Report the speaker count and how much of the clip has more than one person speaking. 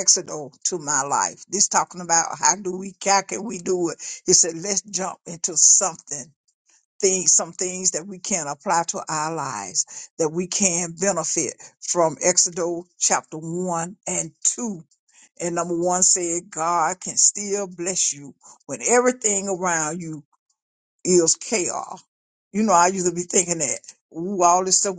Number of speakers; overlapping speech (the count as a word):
one, no overlap